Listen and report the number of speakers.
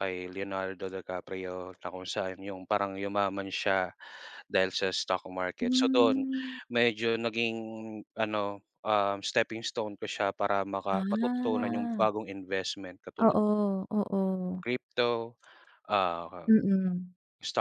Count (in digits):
2